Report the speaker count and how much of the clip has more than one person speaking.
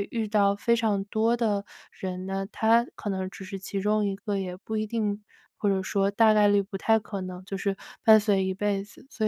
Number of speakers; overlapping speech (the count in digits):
1, no overlap